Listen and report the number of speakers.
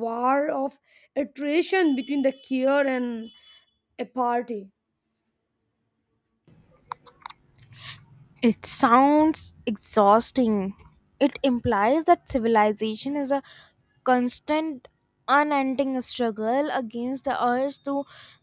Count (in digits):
2